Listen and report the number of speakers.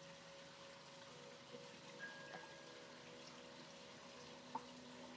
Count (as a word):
zero